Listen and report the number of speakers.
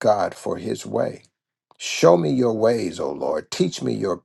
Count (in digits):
1